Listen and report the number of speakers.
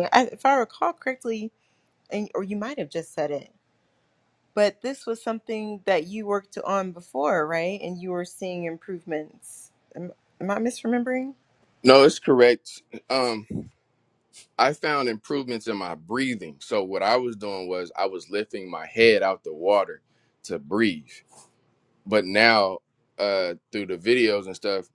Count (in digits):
2